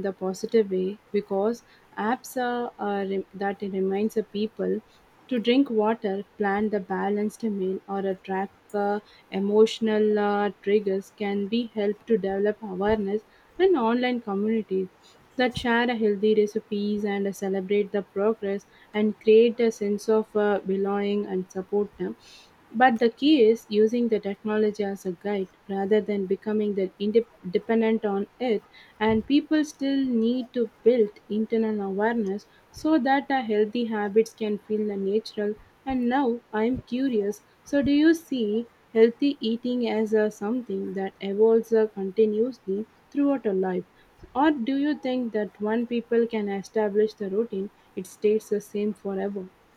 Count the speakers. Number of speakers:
one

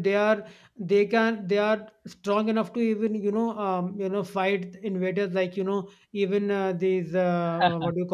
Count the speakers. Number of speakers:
one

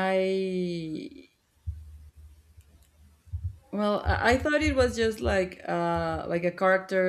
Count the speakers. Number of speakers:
one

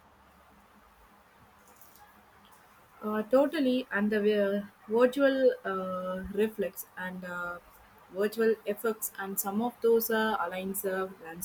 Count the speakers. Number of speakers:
one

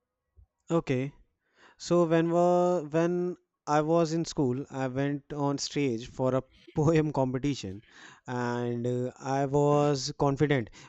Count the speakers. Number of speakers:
one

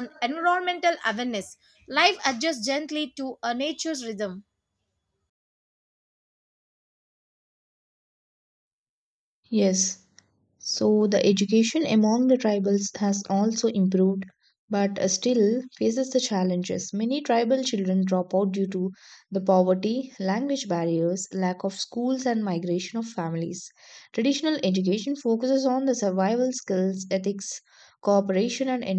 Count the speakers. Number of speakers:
two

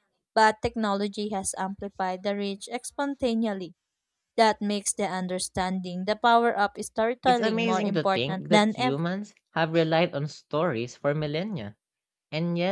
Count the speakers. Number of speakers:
two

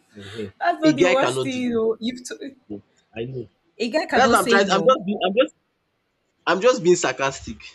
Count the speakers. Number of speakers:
two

